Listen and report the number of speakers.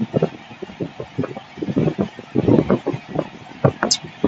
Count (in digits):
0